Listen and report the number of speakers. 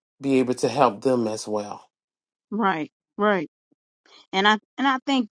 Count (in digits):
2